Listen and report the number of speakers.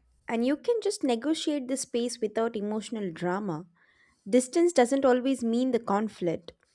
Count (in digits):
1